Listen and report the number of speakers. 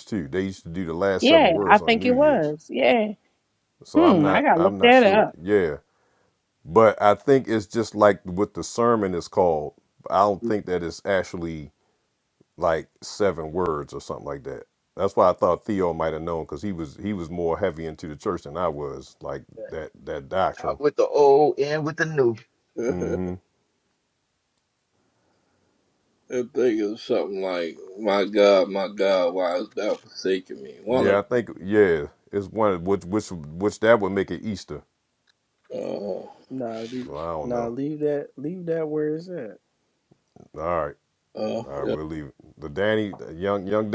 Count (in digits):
5